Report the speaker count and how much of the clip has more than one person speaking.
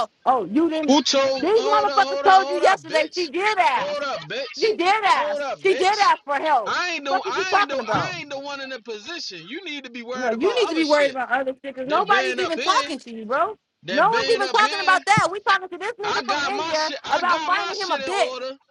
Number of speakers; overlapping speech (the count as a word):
two, about 53%